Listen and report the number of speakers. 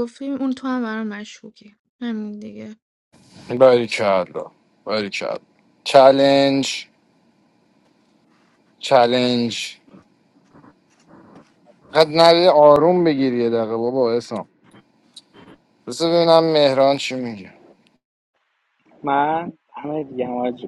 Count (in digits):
3